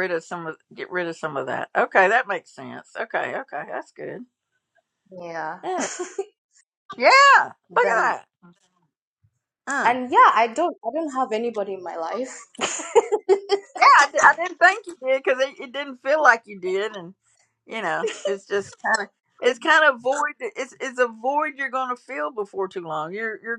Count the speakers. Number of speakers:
2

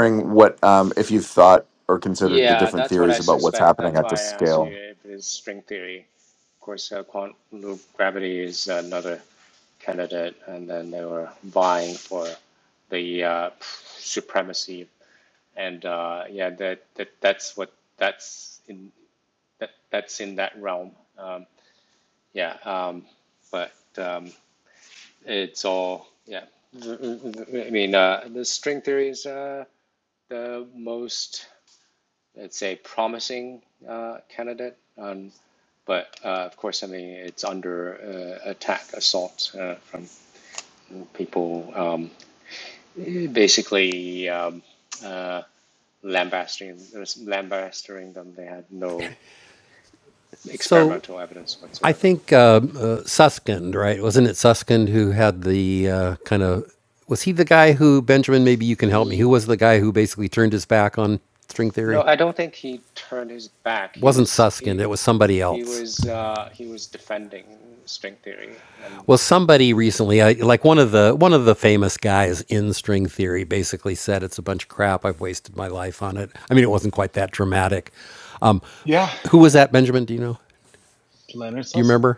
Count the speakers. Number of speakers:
4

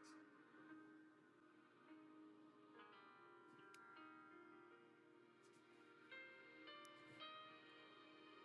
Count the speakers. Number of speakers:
0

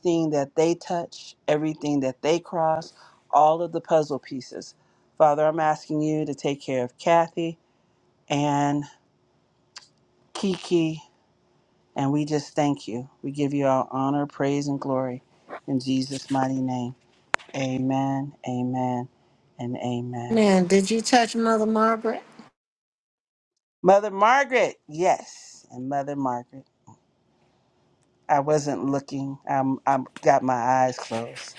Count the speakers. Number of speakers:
2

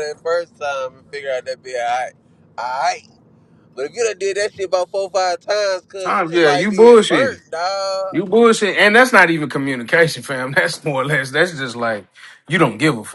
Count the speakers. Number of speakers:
2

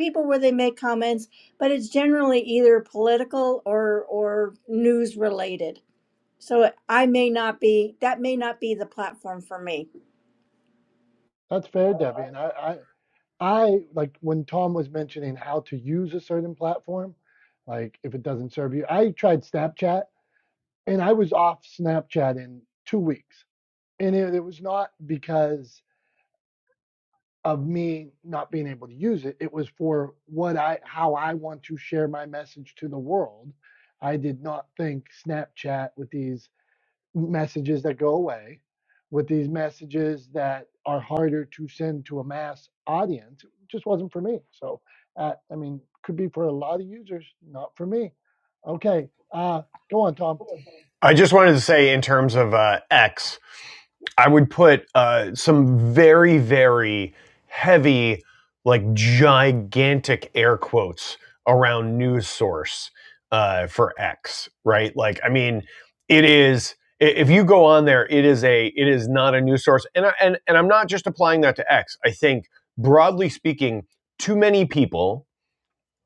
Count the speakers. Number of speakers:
3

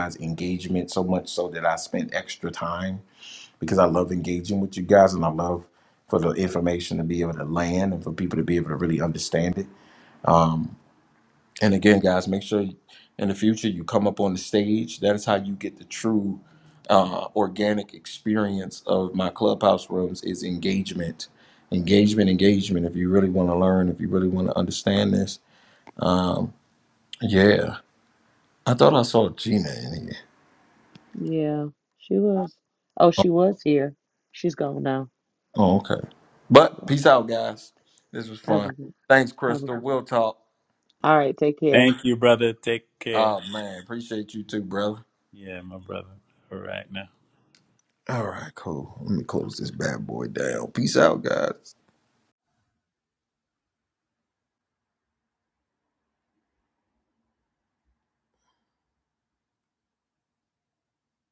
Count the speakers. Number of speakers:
3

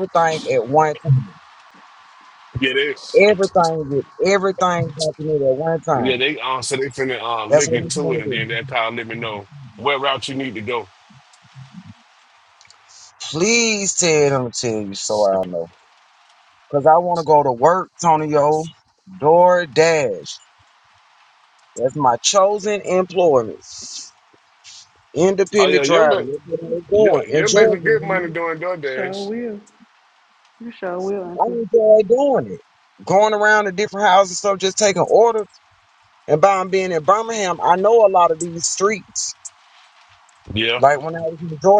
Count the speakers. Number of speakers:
3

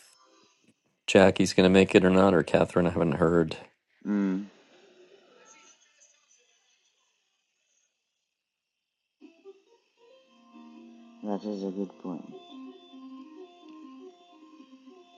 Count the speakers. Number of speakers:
2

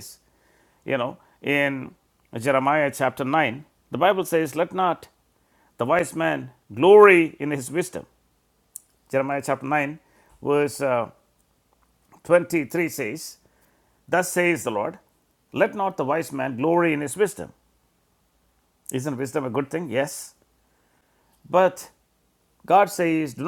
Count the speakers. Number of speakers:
1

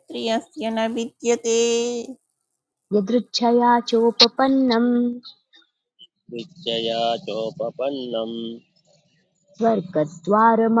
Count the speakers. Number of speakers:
3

